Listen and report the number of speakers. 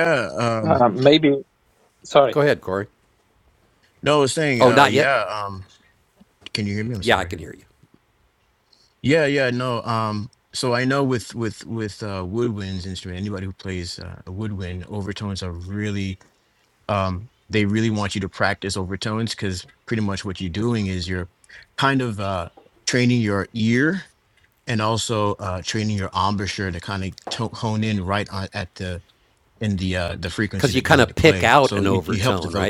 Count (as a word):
three